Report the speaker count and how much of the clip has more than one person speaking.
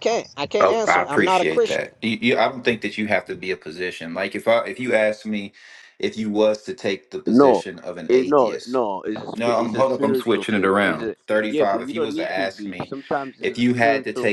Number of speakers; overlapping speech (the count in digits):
3, about 44%